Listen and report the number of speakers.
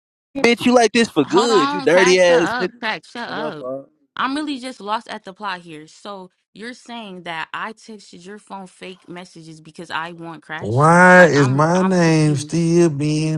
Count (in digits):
3